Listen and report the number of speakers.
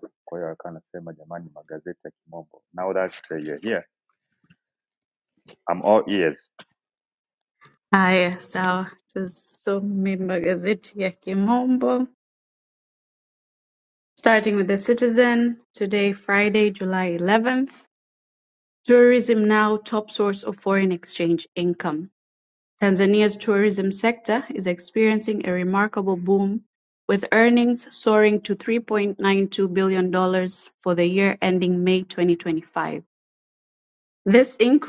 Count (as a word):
two